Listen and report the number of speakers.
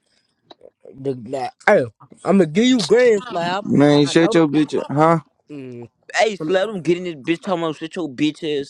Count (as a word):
three